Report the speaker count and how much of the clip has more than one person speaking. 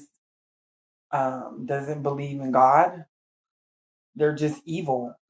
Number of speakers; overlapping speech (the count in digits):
1, no overlap